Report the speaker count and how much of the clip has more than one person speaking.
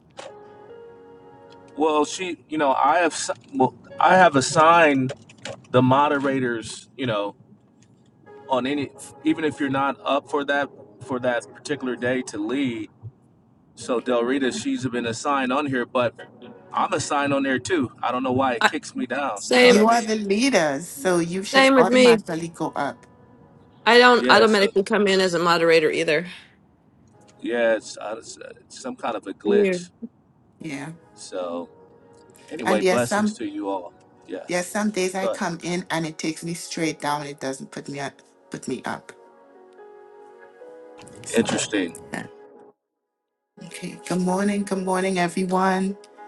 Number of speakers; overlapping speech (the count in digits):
3, about 7%